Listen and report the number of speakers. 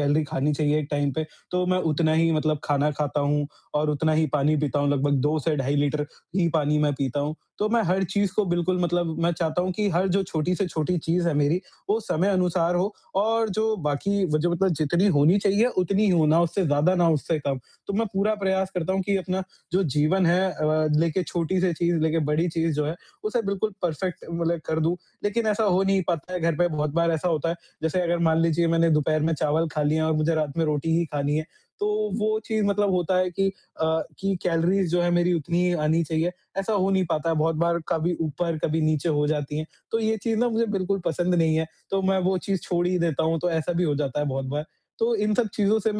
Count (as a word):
one